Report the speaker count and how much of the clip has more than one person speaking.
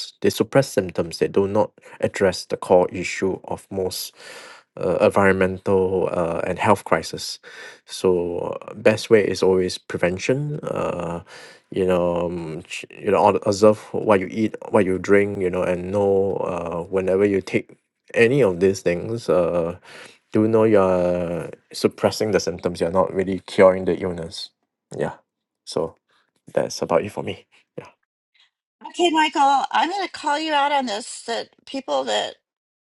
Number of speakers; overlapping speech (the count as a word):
two, no overlap